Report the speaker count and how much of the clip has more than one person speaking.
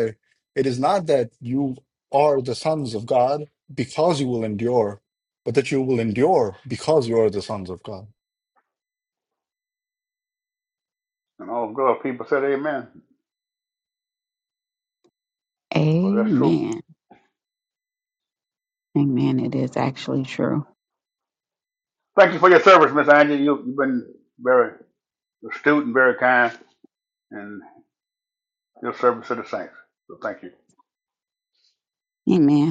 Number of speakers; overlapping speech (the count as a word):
three, about 2%